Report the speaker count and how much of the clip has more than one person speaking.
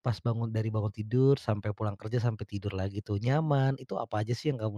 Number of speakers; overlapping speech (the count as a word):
one, no overlap